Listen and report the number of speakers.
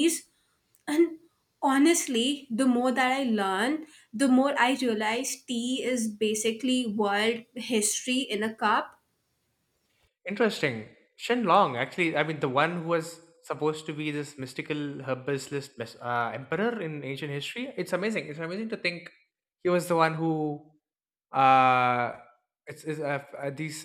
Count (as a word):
two